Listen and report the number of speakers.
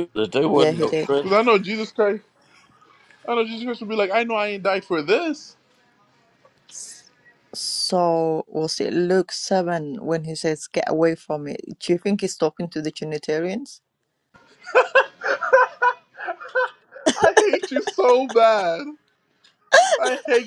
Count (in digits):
3